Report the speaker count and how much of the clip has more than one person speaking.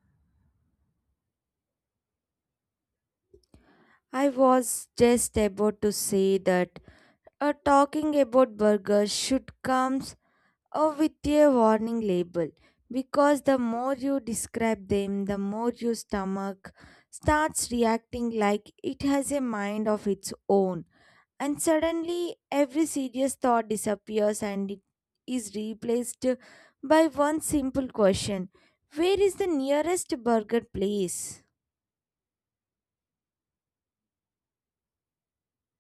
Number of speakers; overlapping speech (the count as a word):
one, no overlap